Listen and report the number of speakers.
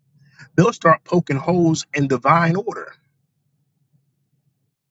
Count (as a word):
one